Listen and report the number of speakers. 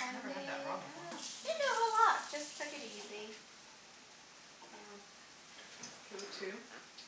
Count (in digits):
2